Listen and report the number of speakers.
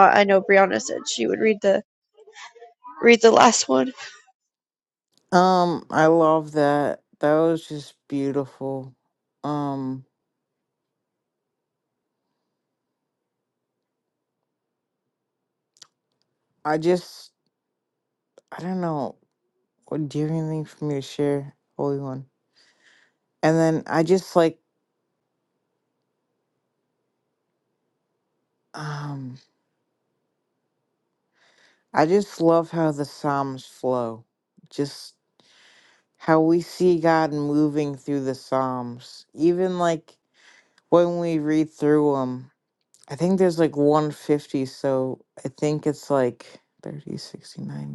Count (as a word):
two